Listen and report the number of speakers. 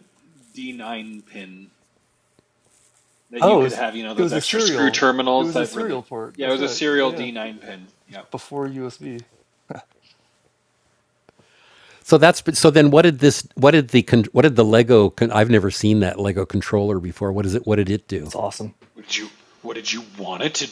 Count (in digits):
3